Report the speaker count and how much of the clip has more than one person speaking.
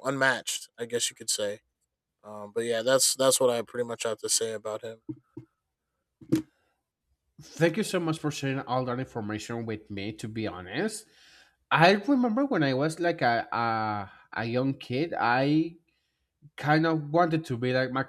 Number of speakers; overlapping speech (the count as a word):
two, no overlap